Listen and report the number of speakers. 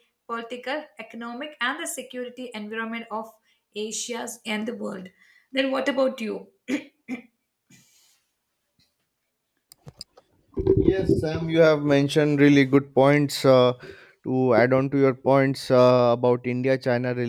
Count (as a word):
two